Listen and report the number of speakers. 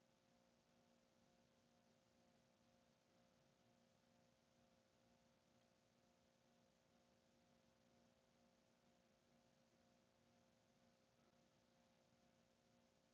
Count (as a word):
zero